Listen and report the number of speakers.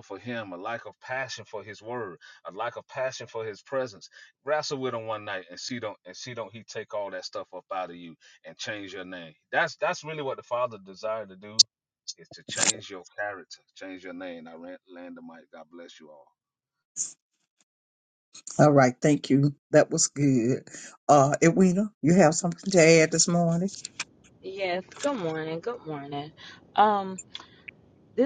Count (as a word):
three